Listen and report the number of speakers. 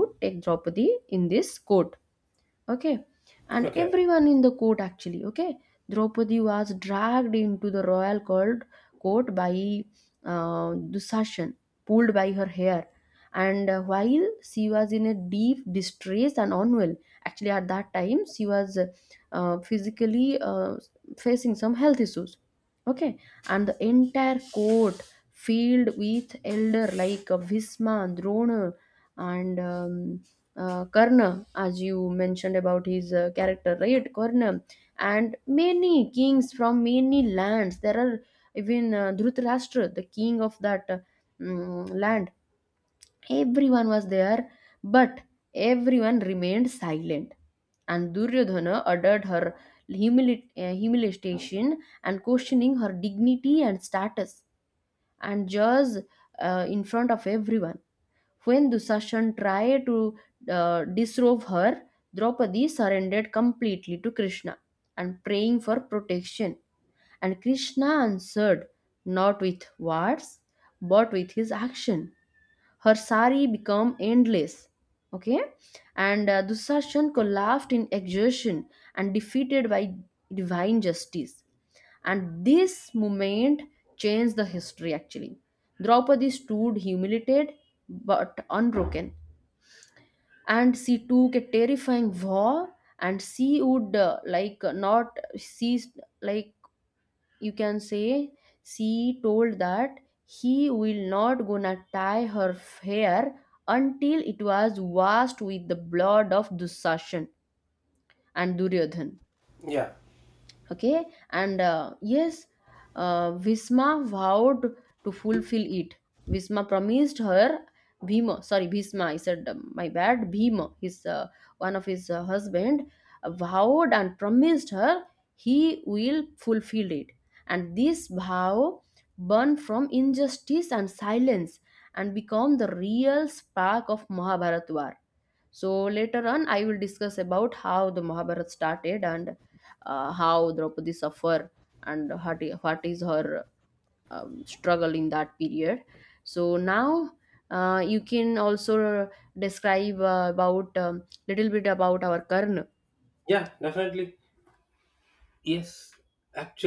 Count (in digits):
2